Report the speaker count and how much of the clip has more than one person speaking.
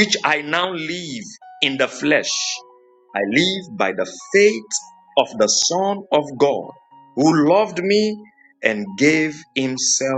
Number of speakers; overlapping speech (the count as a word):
one, no overlap